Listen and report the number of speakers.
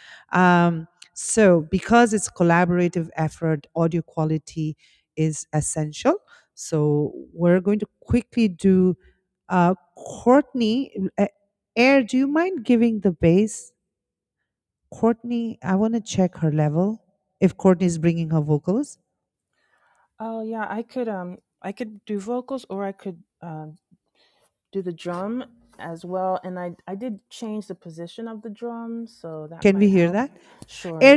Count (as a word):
two